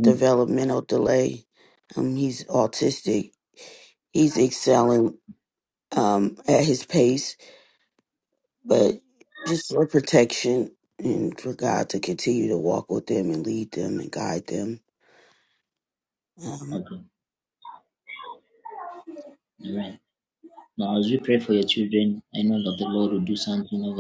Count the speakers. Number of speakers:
two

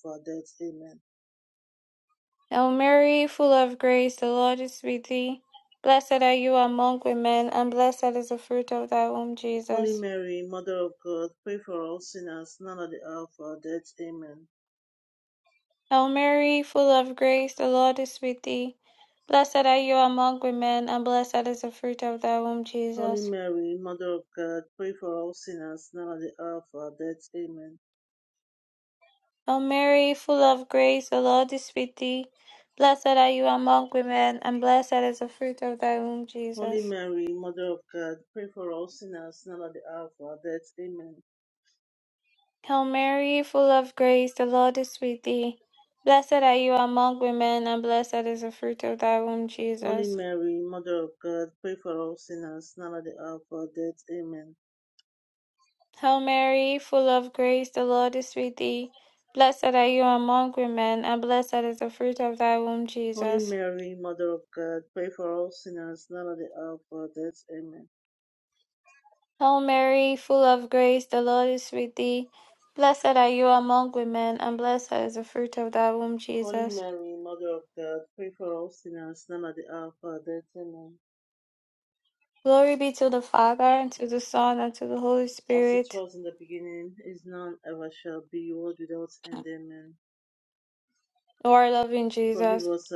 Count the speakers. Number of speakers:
two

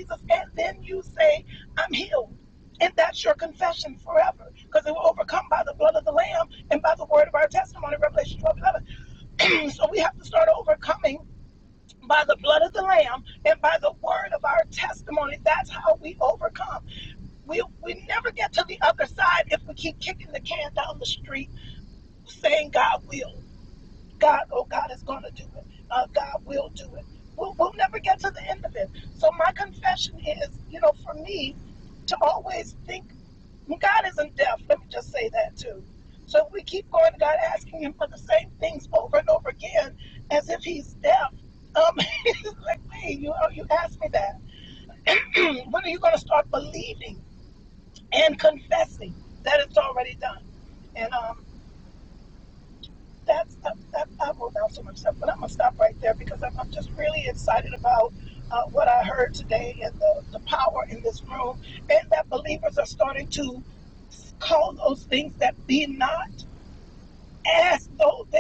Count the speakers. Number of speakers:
one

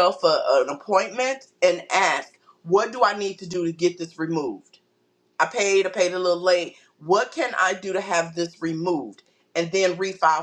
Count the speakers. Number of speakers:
one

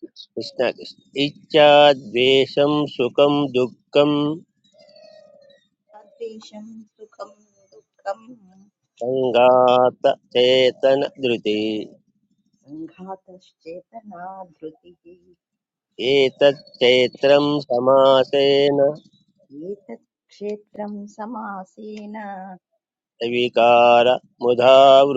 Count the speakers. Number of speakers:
two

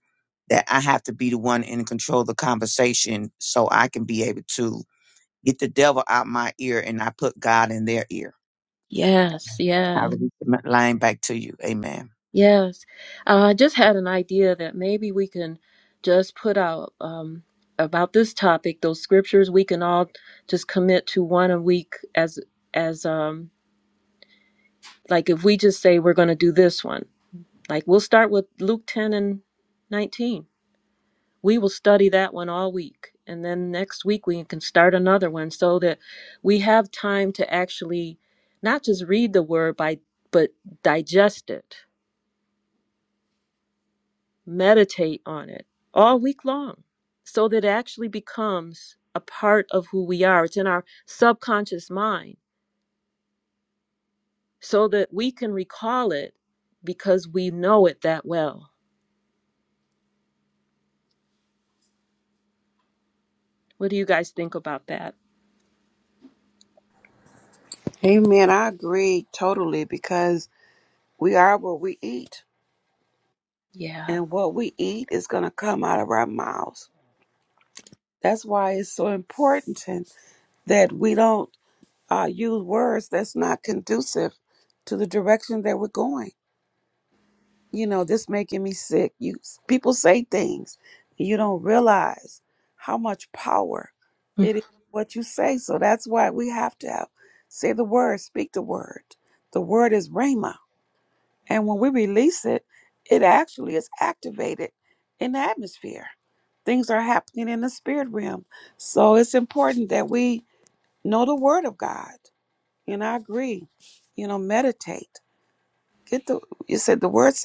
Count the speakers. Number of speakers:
three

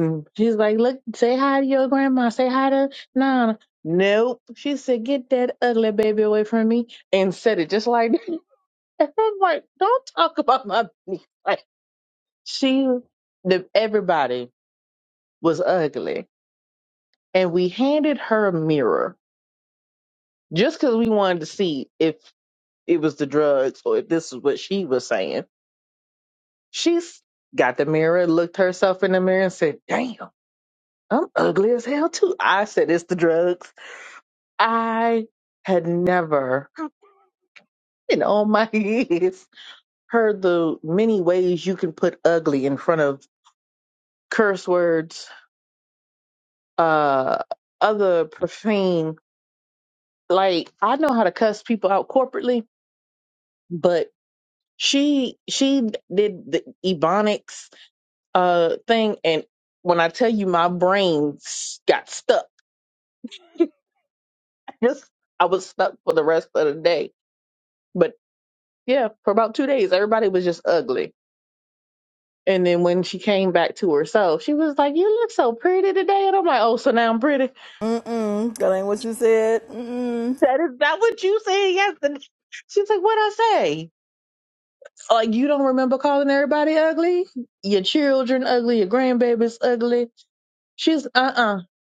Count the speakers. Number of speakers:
two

